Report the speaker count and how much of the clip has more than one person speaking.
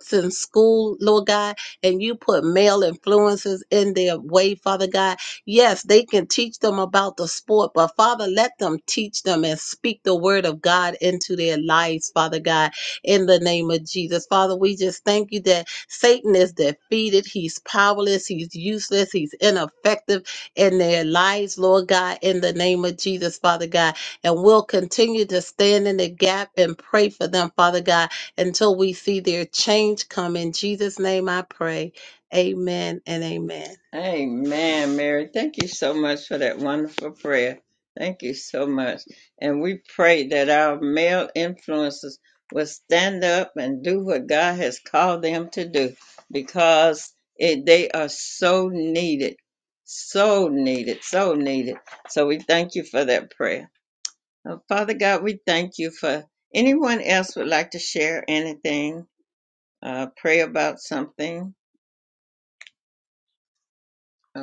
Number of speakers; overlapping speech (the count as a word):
two, no overlap